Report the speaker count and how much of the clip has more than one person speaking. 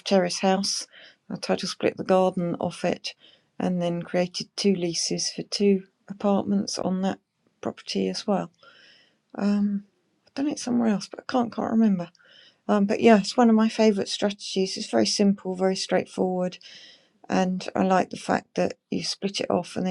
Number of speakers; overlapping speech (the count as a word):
one, no overlap